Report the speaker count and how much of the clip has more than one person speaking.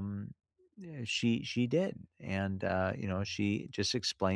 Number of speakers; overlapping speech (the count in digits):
1, no overlap